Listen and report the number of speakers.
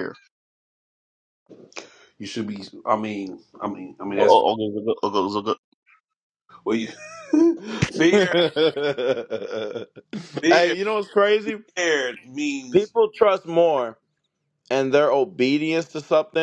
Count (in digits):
3